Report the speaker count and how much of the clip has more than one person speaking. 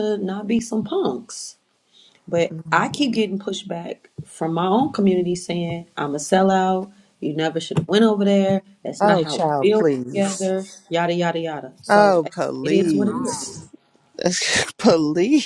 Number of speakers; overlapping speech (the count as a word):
two, about 22%